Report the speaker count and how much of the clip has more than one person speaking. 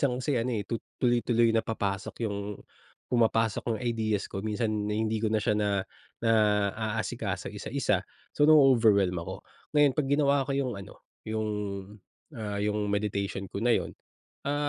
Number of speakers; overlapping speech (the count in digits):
1, no overlap